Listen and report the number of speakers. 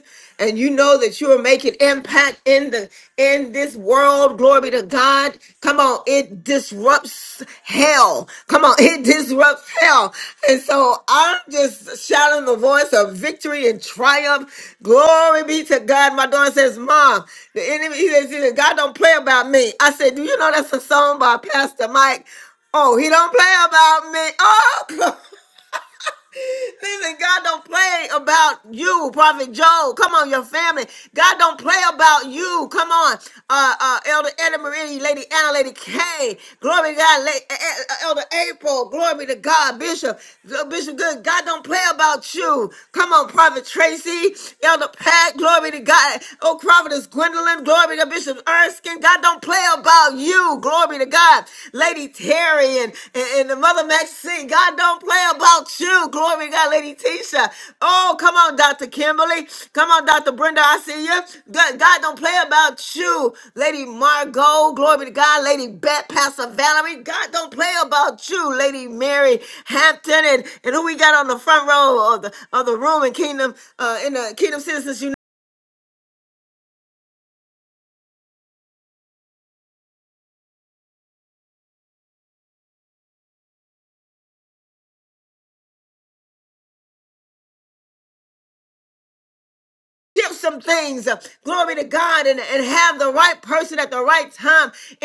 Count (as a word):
one